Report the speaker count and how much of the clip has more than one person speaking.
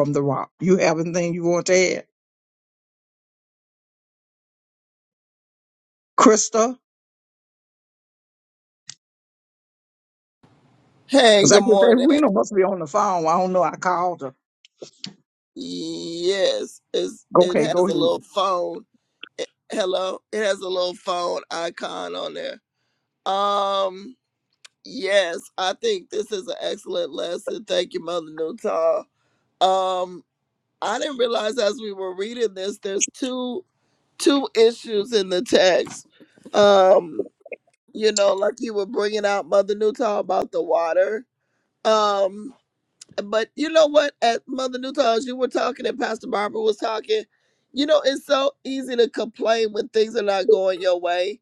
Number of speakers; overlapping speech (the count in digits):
2, about 3%